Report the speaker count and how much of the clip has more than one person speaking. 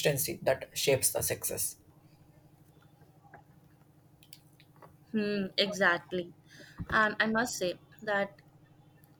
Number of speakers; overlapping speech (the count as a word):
two, no overlap